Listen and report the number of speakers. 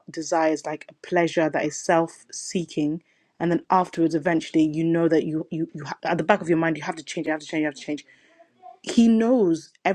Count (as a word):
one